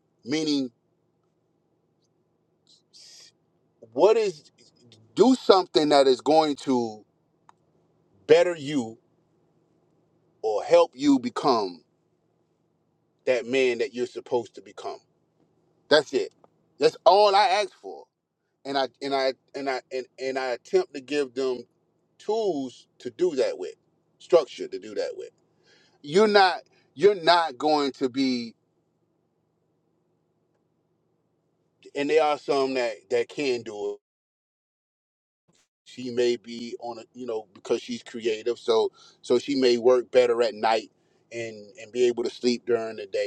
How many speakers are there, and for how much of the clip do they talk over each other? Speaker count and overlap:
1, no overlap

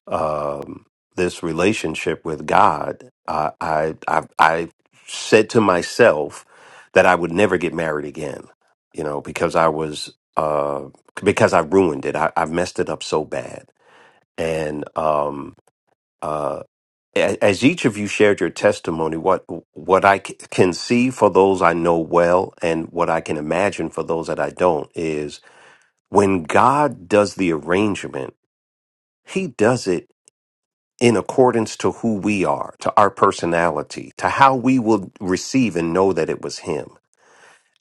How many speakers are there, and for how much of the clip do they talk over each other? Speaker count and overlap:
1, no overlap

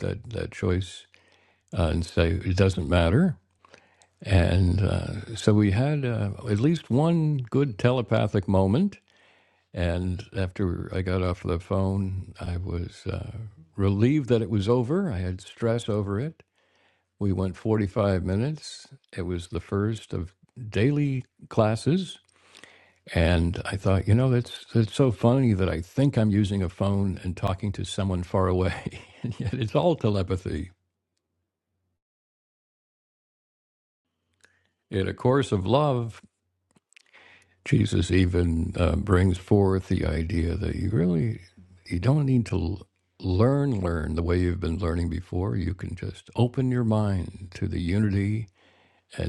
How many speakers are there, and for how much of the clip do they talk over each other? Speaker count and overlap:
1, no overlap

